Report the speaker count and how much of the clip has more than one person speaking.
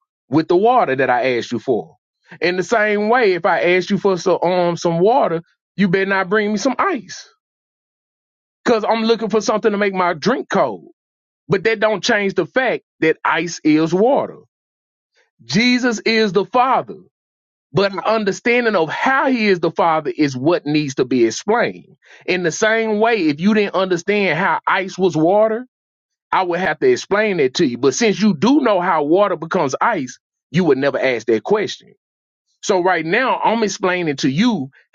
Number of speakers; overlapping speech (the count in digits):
1, no overlap